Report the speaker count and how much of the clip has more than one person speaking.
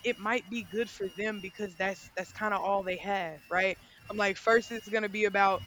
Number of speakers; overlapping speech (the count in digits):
1, no overlap